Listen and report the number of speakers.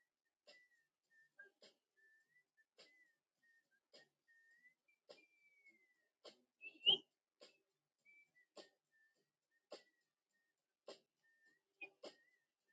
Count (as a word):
zero